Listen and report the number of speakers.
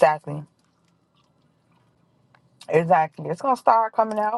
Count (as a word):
one